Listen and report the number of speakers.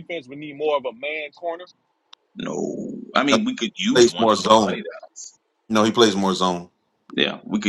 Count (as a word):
three